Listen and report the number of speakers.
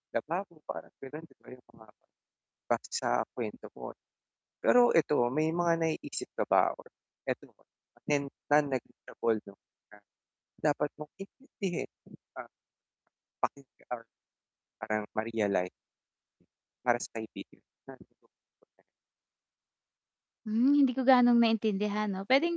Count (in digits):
2